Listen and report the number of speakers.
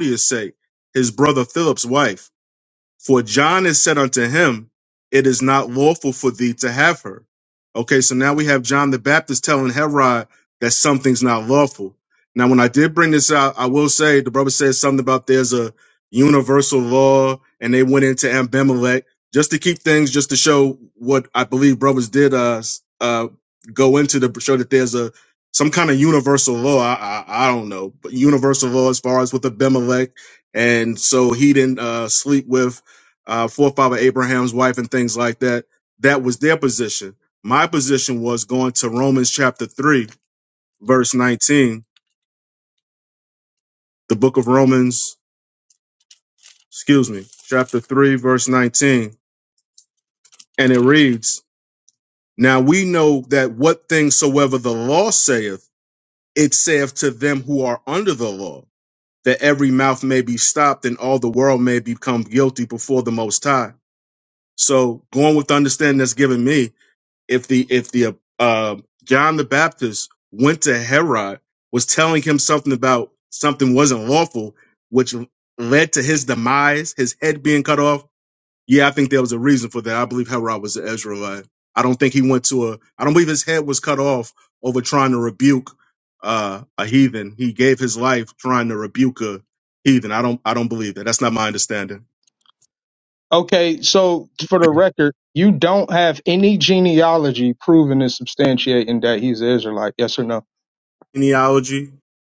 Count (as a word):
two